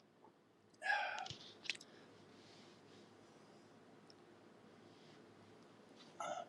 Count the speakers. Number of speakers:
0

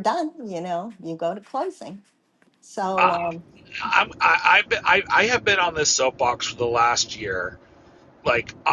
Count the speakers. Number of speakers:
2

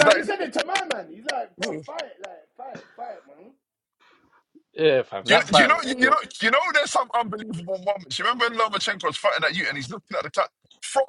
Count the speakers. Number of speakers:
3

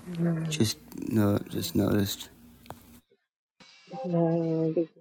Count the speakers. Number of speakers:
2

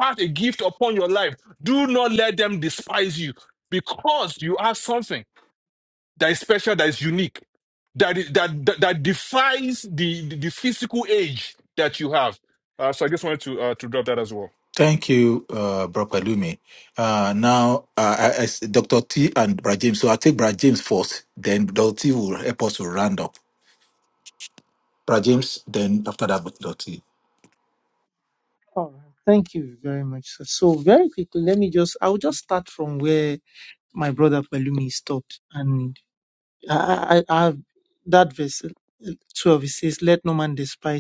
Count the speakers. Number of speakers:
3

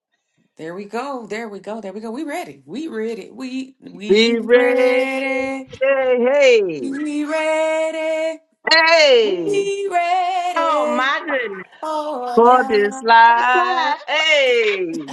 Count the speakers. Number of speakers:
3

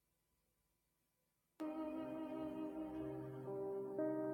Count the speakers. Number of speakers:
0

